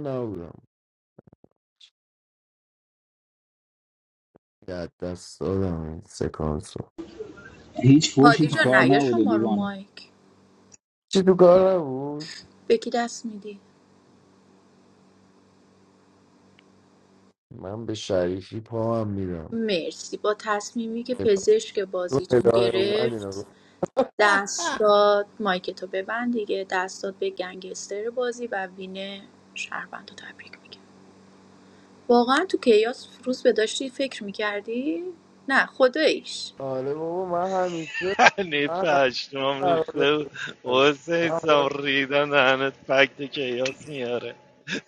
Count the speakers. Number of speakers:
4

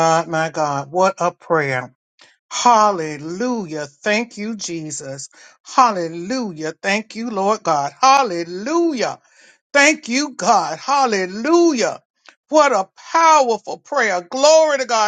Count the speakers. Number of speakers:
1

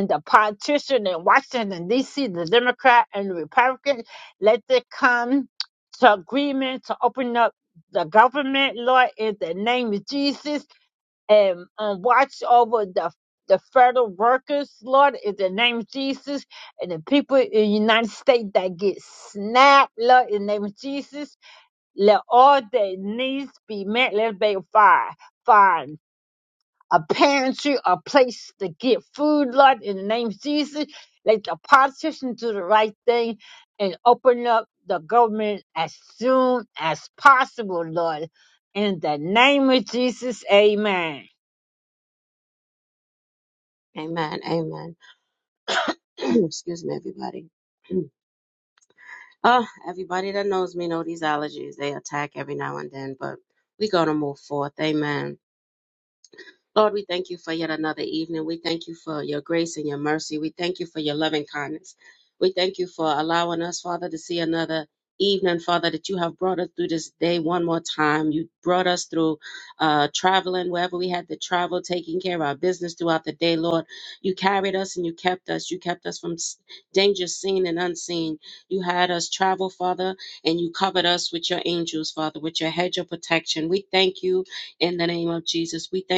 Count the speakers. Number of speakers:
2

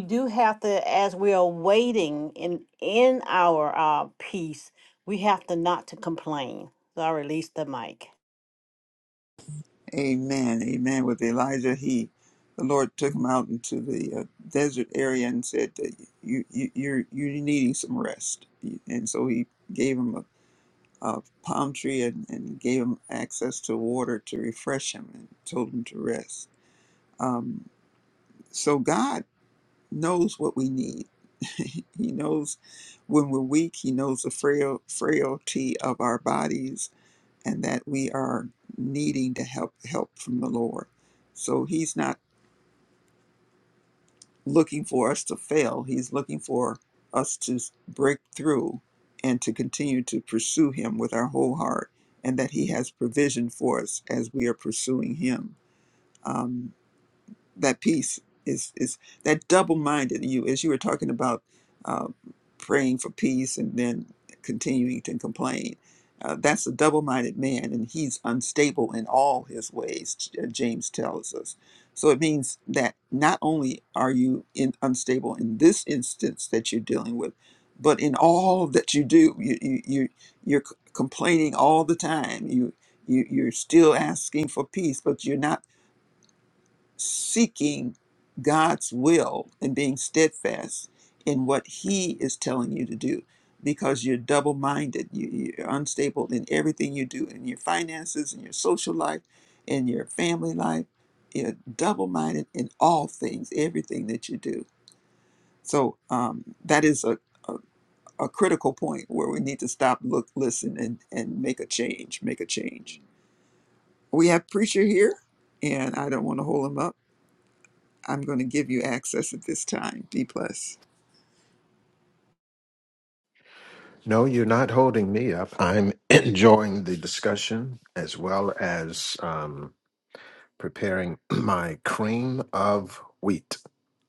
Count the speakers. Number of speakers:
3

